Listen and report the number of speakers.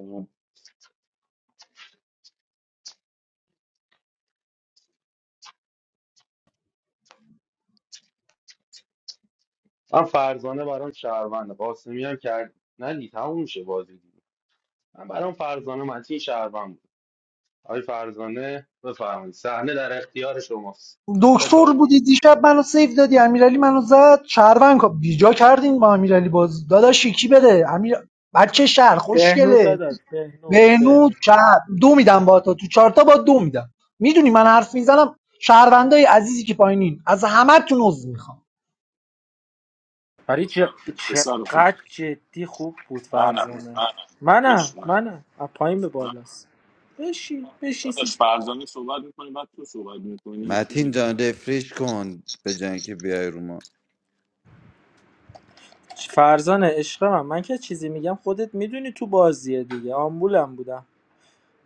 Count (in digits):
5